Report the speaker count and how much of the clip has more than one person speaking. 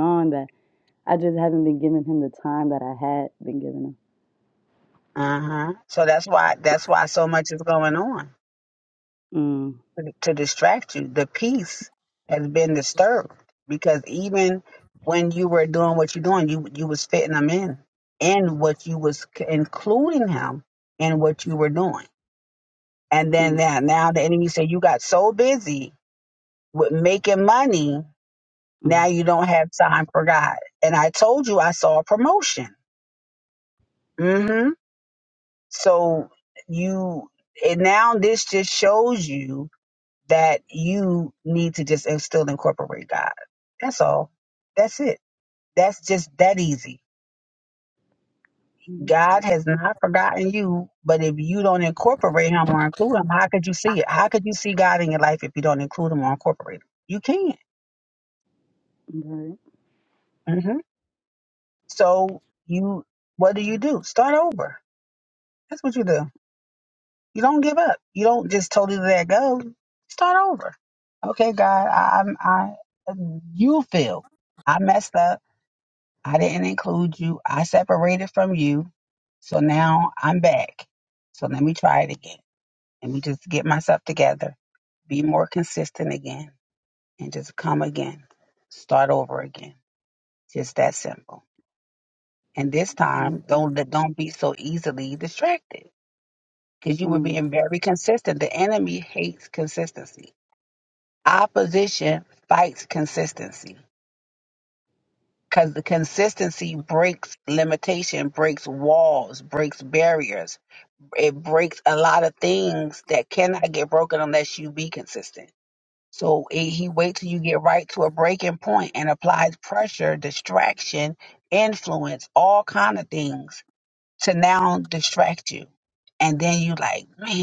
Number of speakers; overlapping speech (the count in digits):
2, about 1%